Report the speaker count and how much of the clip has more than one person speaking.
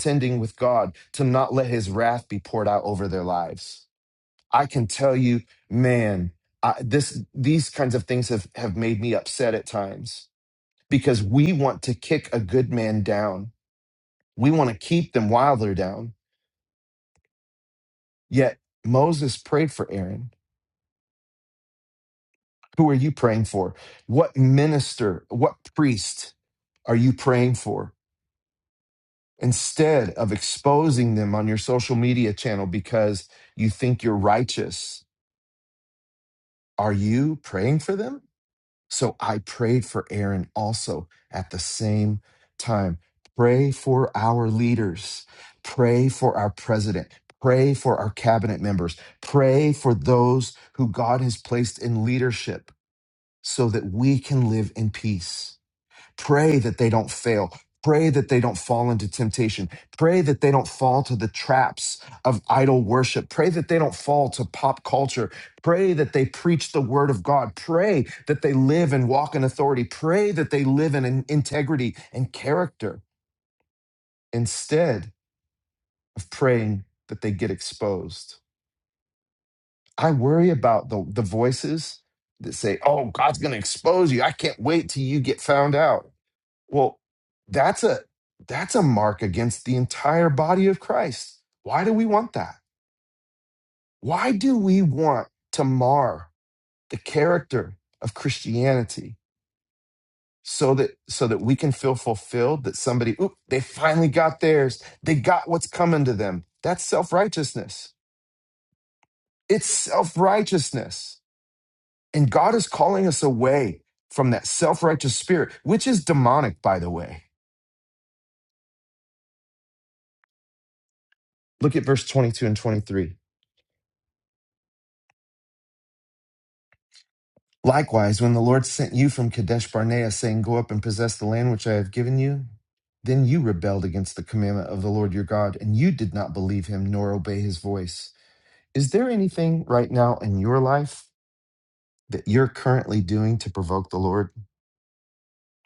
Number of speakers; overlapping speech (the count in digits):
1, no overlap